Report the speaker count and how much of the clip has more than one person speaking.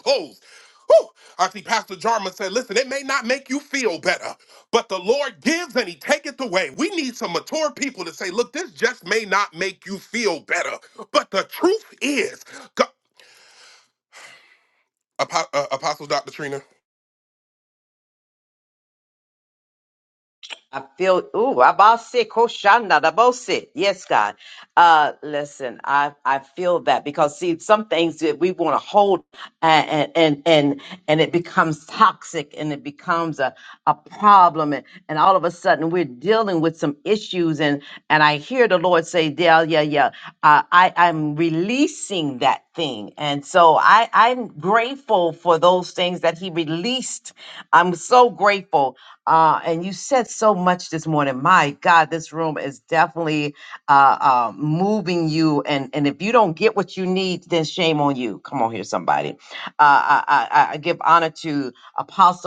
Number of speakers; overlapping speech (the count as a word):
two, no overlap